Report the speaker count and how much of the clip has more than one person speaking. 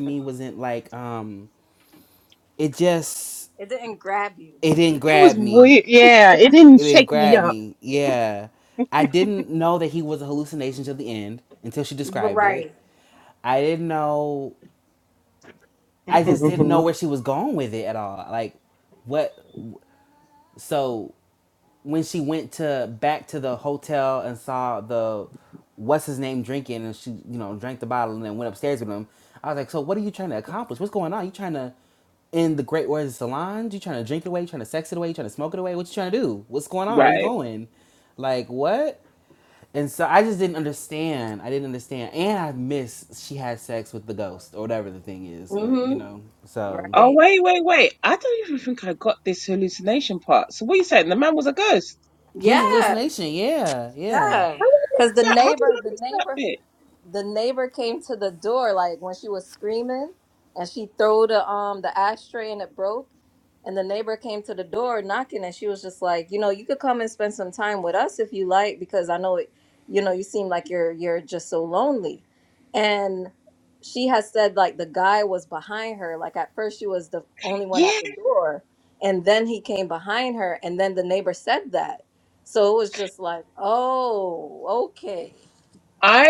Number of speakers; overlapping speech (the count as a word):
four, about 8%